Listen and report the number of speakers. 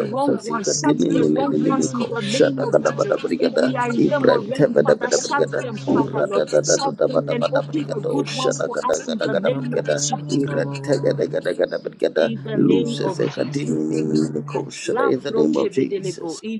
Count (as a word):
three